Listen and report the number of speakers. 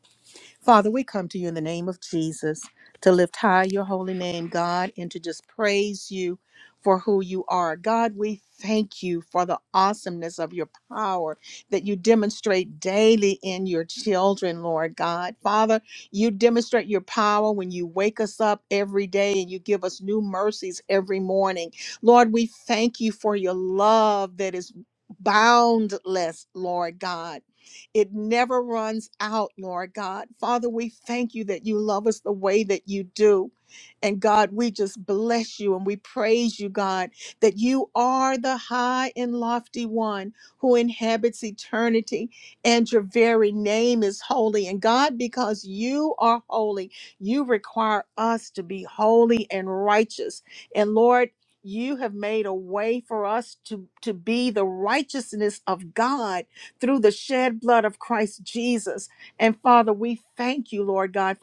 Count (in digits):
1